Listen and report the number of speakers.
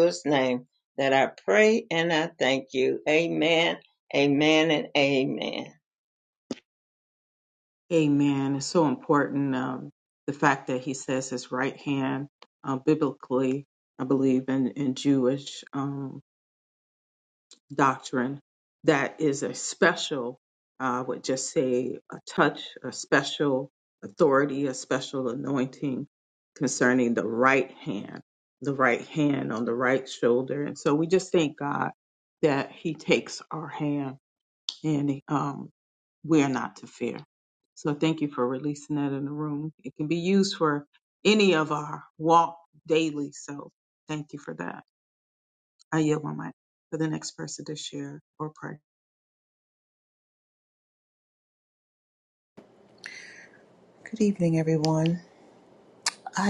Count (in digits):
3